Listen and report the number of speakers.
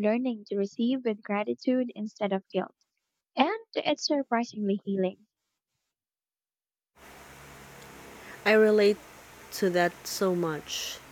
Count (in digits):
2